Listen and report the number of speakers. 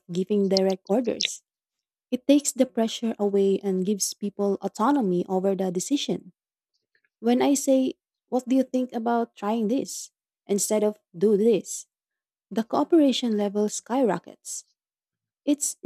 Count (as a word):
one